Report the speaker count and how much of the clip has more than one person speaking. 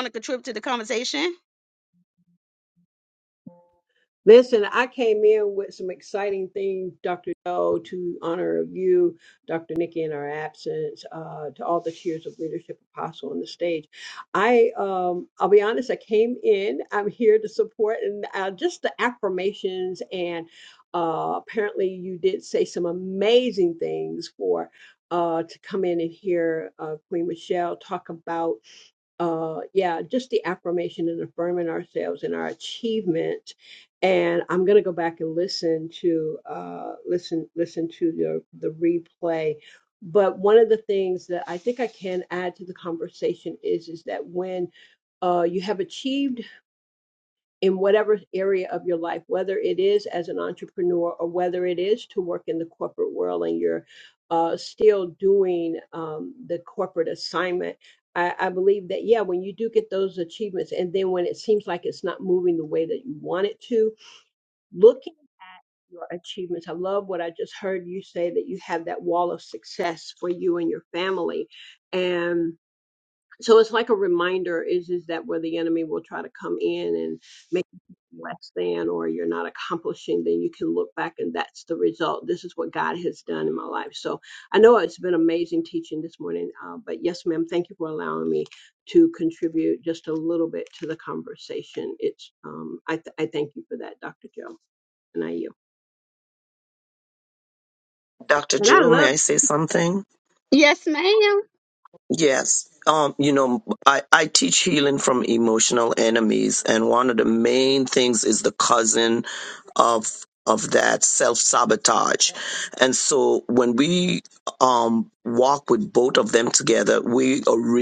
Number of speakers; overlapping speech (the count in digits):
3, under 1%